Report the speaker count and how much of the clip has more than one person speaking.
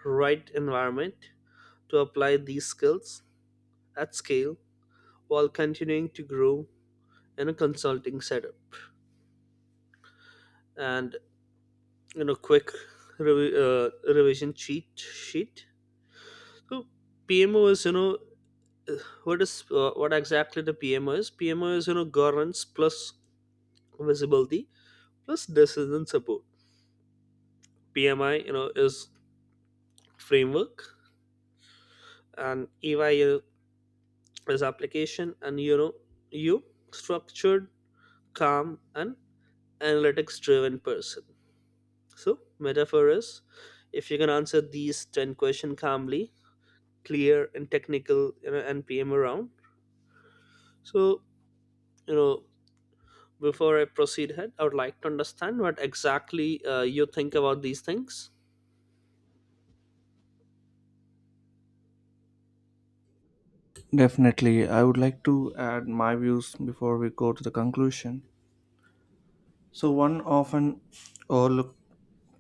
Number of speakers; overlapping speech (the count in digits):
2, no overlap